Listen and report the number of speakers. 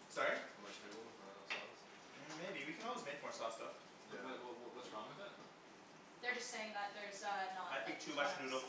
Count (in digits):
4